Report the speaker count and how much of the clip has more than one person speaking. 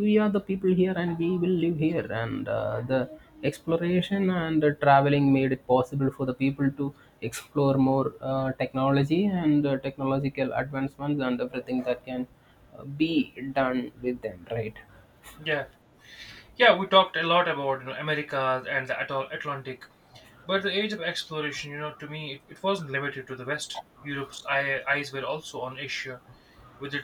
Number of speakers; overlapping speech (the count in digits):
2, no overlap